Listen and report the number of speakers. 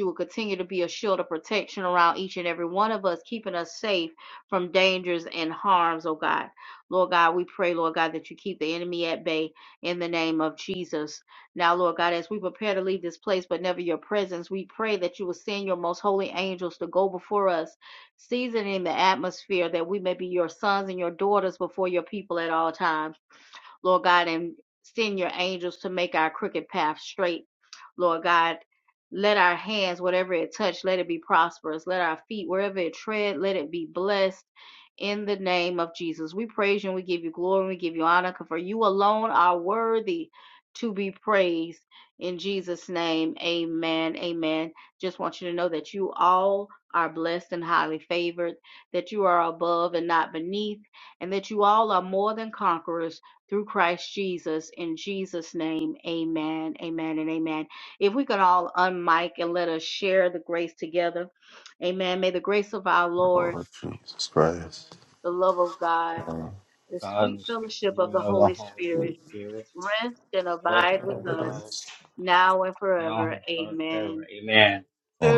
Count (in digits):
3